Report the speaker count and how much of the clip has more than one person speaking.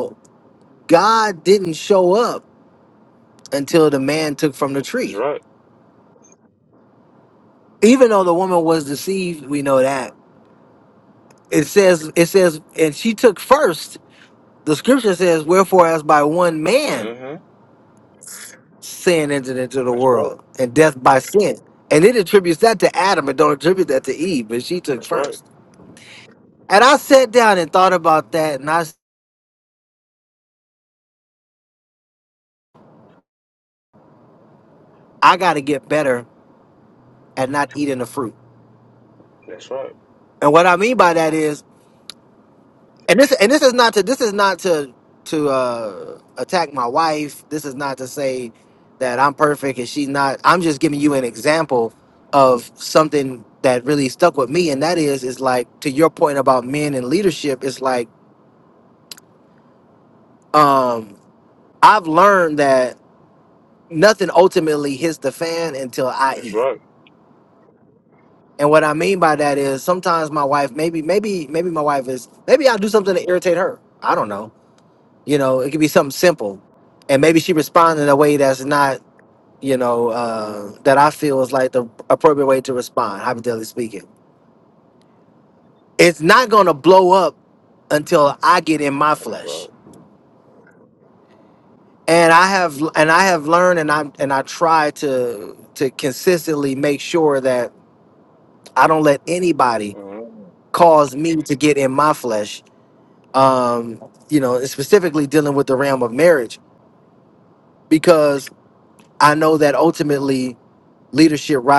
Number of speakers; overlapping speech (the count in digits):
2, about 2%